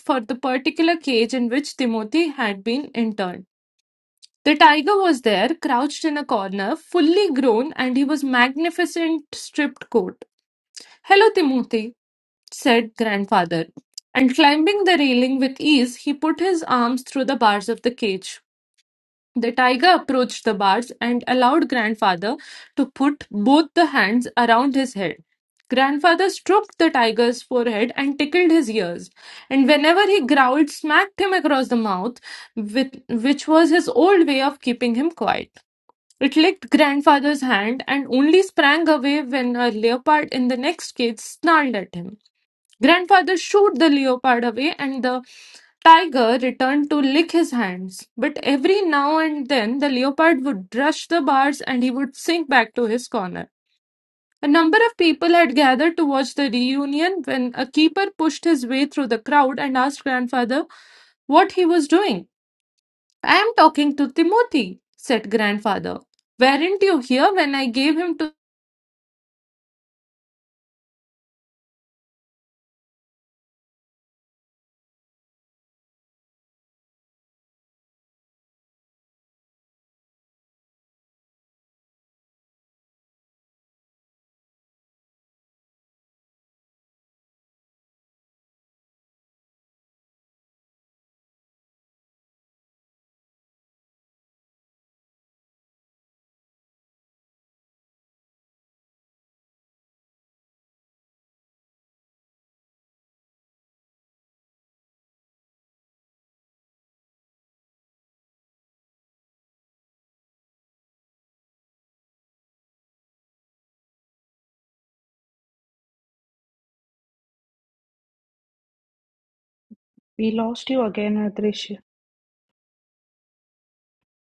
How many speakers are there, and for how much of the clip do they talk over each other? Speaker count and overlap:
two, no overlap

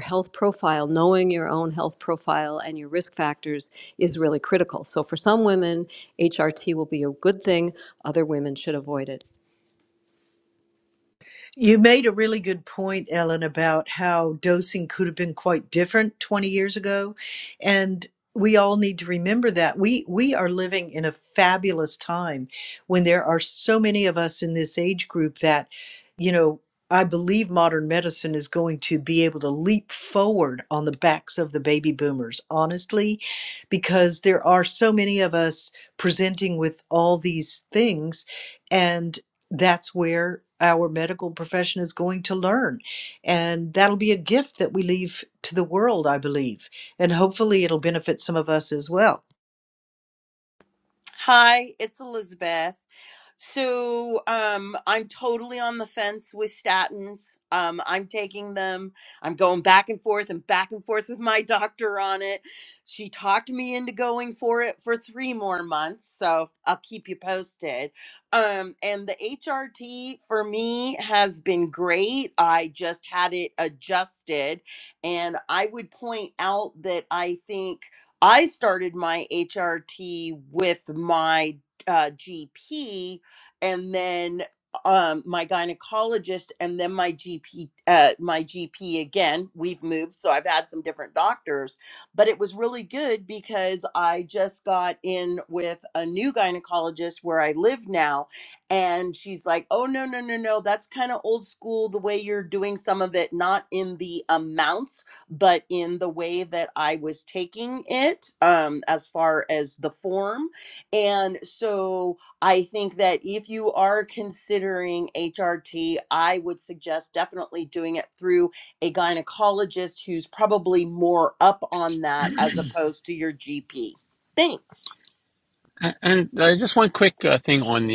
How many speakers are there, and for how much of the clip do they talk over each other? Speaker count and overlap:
four, no overlap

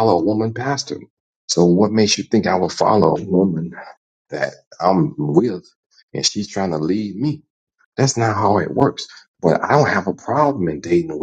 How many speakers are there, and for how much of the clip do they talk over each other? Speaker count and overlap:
one, no overlap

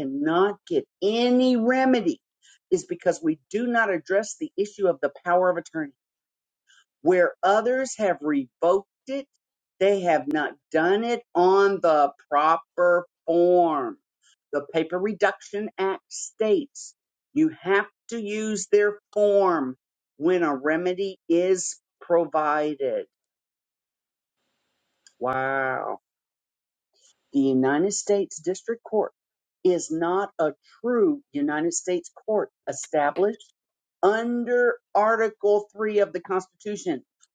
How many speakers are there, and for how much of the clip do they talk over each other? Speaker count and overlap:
one, no overlap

